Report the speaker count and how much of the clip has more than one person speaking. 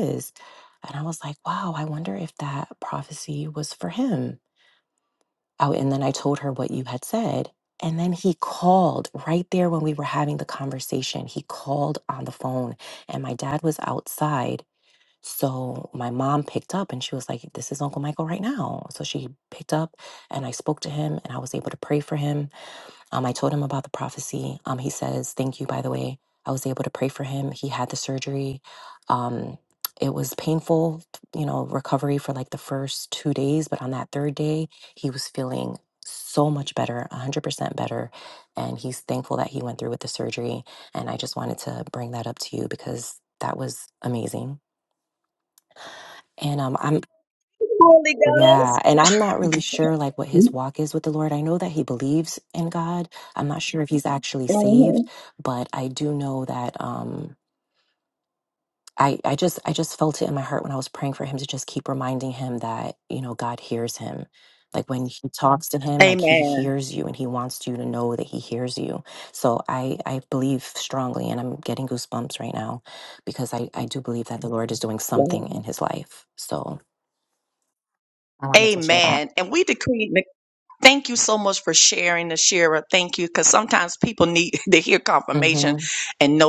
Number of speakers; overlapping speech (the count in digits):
2, about 2%